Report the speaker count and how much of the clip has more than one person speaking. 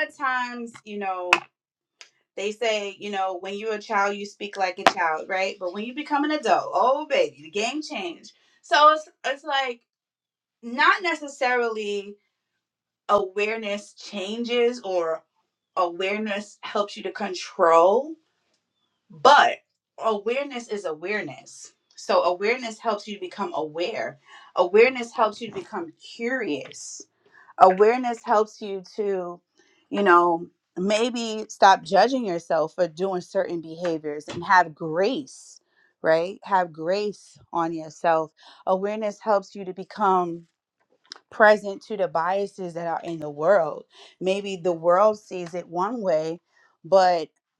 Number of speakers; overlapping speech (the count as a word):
one, no overlap